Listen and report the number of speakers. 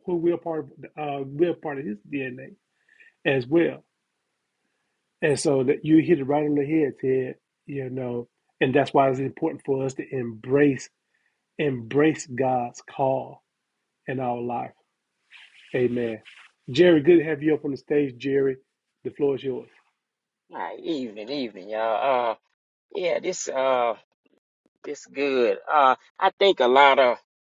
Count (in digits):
2